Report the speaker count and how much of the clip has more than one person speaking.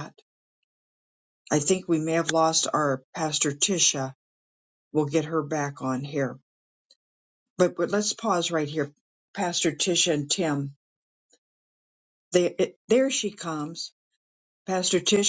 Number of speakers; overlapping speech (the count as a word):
one, no overlap